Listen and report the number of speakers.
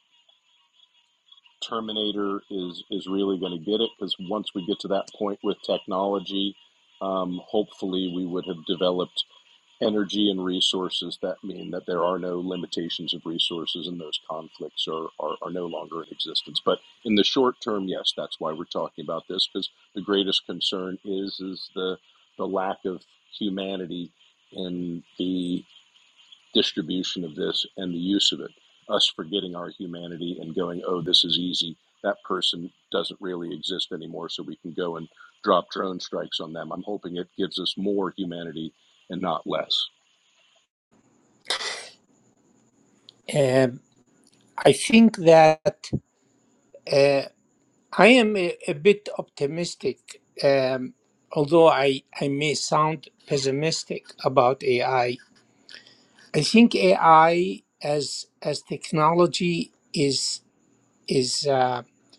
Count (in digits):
2